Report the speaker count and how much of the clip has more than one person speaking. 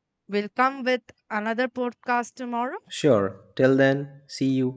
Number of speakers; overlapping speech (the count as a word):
two, no overlap